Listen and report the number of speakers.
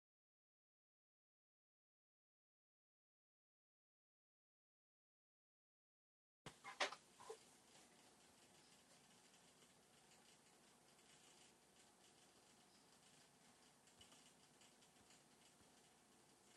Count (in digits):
0